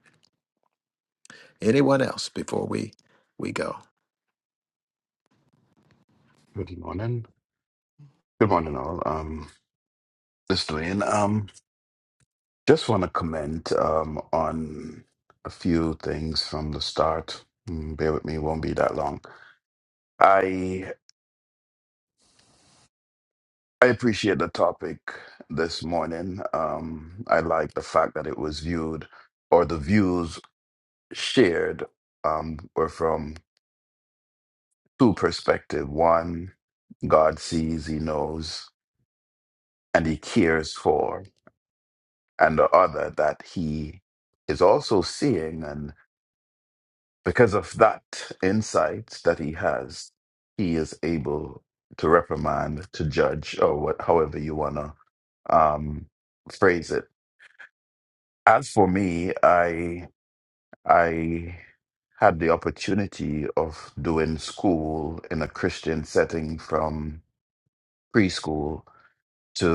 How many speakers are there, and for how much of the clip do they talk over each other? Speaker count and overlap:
2, no overlap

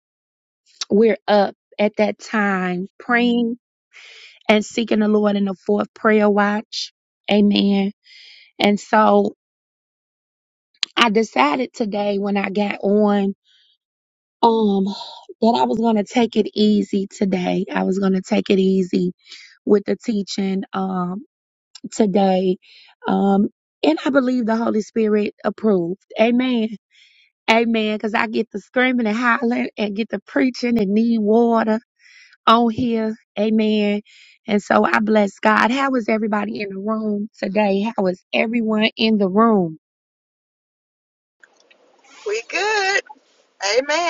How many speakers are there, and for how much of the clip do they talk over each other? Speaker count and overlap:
2, no overlap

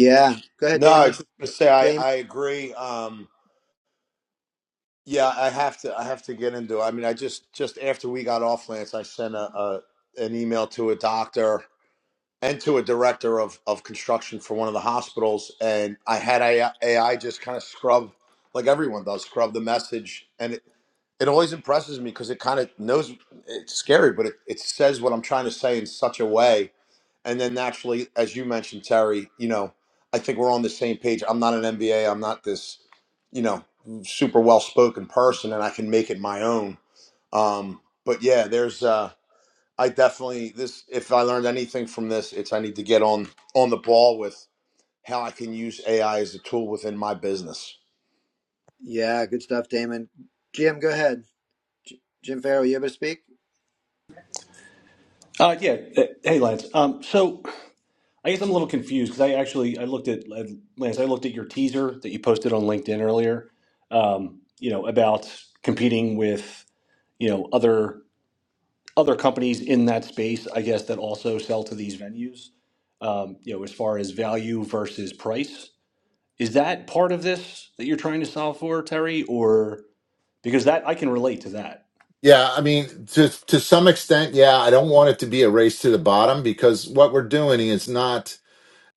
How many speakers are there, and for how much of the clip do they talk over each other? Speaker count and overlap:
4, about 1%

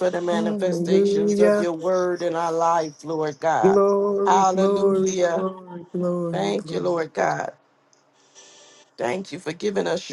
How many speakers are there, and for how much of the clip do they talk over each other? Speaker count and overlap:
2, about 29%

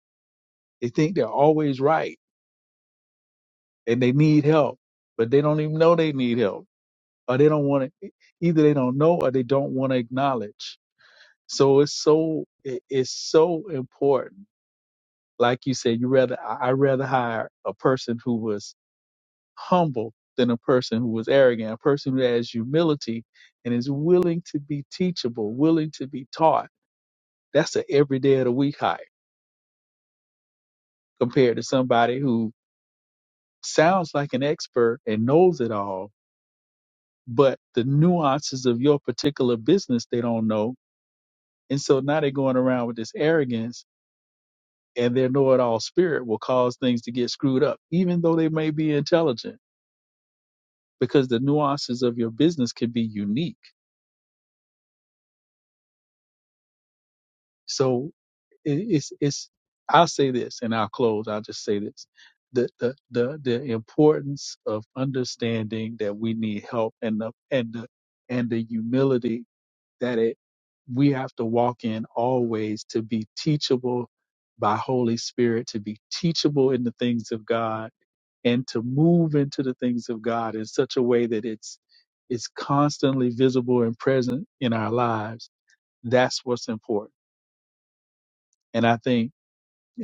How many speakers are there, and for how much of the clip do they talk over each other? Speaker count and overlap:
1, no overlap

